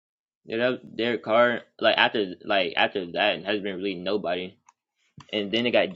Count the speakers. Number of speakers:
1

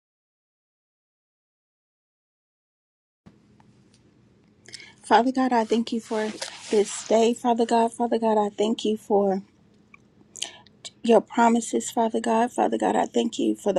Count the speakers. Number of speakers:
1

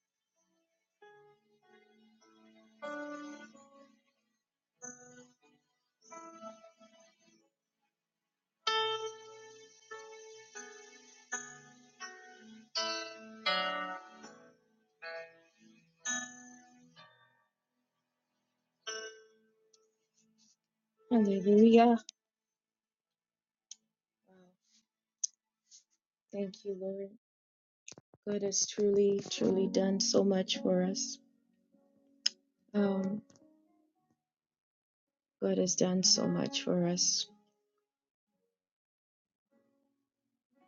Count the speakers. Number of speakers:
1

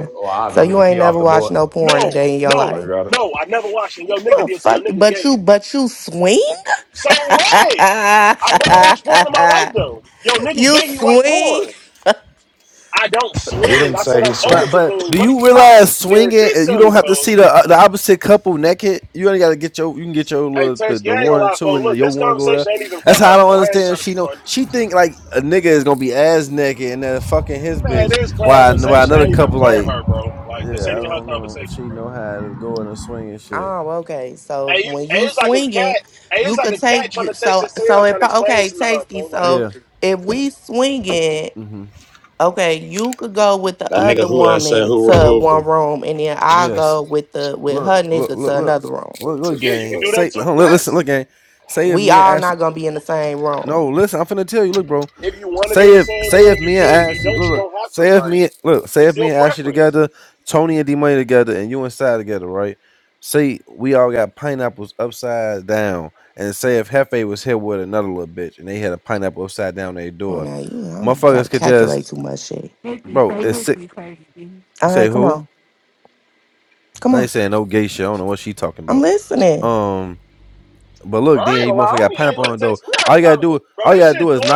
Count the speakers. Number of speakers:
5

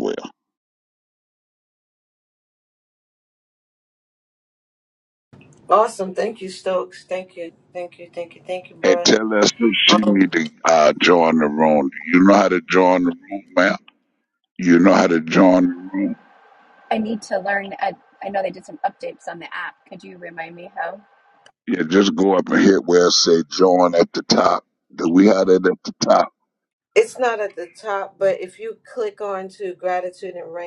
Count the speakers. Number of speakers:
3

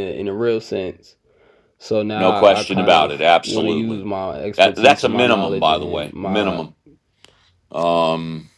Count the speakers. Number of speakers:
2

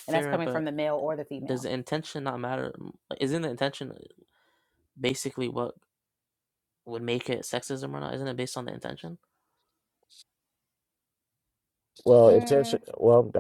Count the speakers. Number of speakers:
3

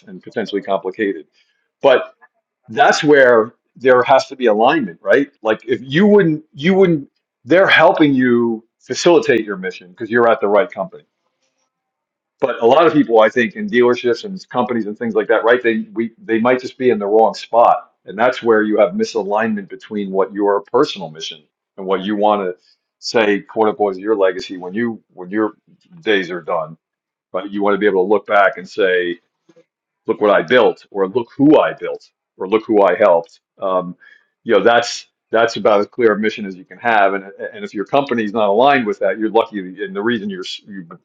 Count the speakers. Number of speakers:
1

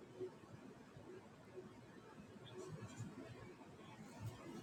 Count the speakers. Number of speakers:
0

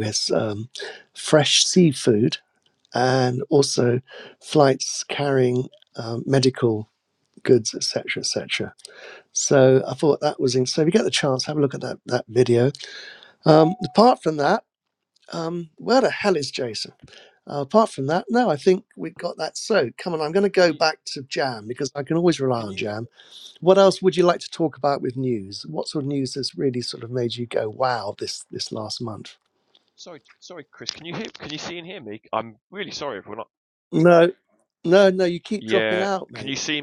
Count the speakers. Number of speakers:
2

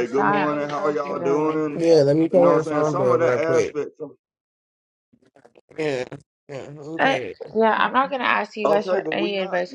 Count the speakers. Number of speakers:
3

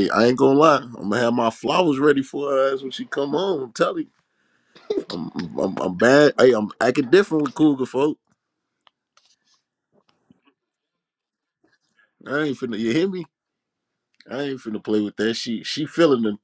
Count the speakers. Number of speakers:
1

